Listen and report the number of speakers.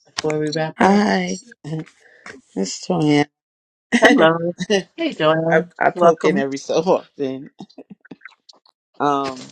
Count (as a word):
two